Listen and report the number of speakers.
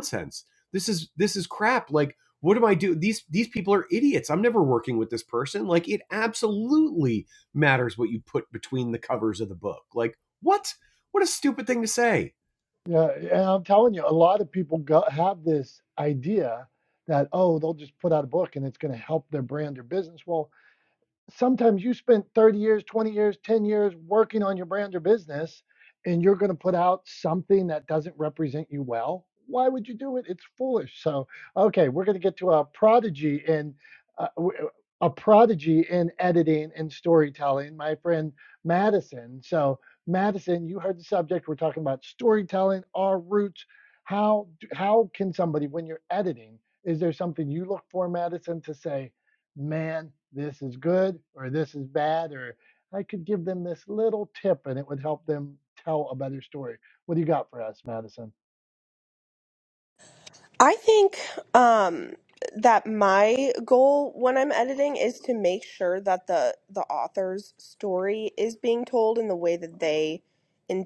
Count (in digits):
3